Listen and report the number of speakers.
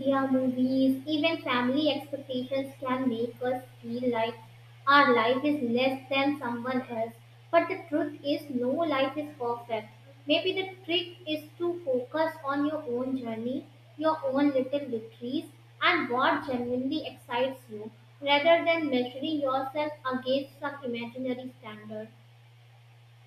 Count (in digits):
1